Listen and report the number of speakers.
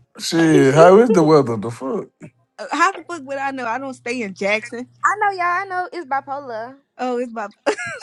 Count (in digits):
3